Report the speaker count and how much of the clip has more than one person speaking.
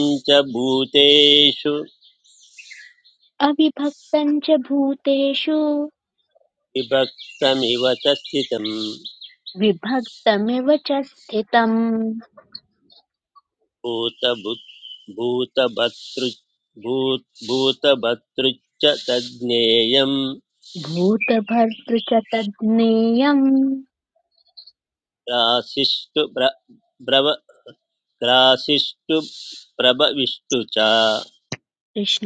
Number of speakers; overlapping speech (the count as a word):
two, no overlap